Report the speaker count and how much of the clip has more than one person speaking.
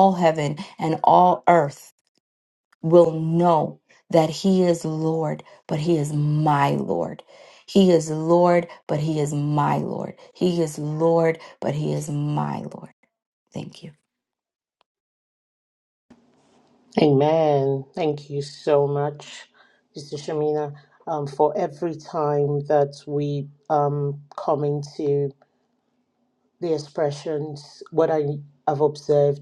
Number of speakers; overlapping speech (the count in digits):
2, no overlap